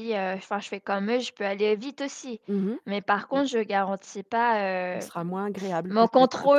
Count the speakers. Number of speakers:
2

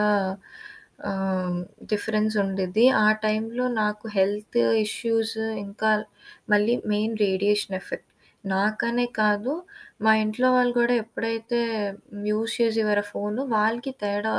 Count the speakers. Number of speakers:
1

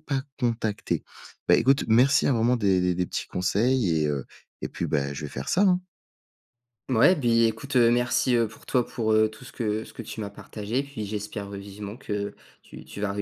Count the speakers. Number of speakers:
2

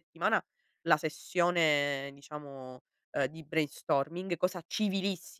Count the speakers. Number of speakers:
1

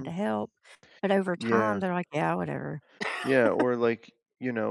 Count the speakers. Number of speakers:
2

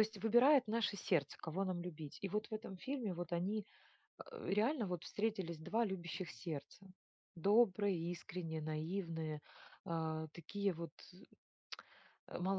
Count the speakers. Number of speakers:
1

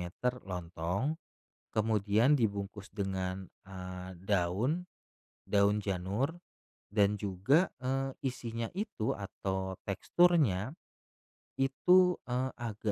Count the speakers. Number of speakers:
1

